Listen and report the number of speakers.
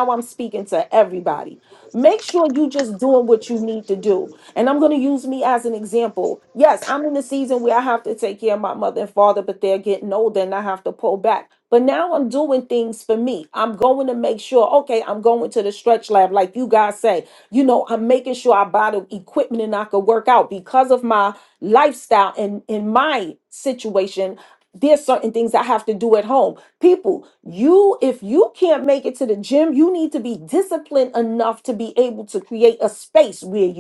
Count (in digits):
1